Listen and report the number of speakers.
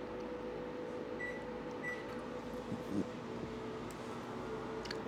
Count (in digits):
0